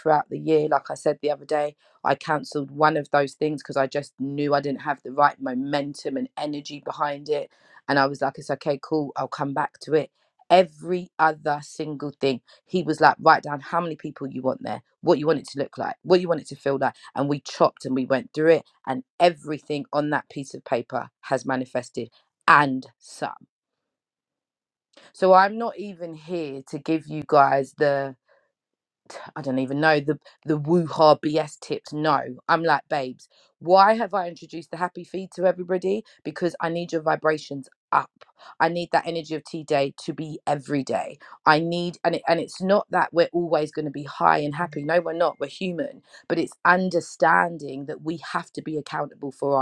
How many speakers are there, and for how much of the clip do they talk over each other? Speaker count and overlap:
one, no overlap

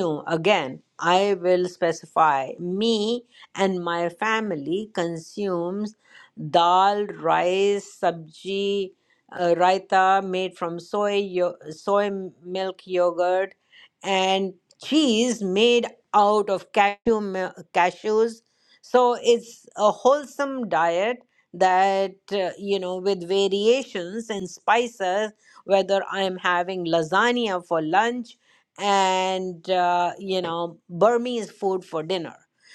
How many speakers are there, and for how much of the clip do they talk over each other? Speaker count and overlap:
one, no overlap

